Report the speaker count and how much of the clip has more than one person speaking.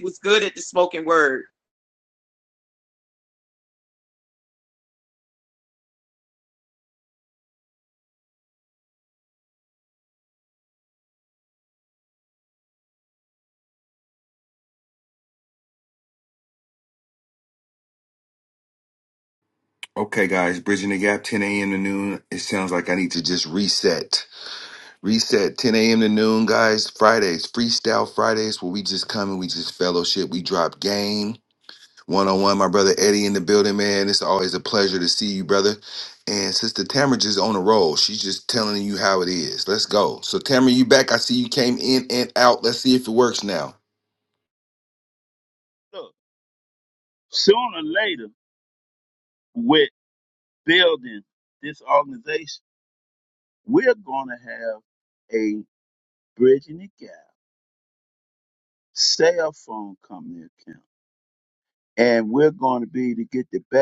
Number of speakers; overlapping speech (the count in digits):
3, no overlap